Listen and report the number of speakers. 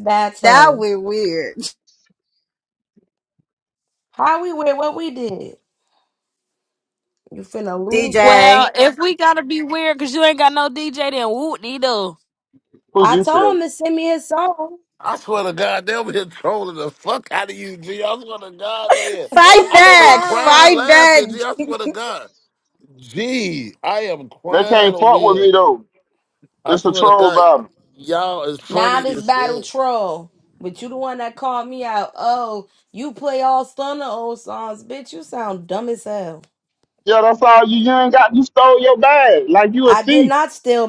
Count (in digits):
5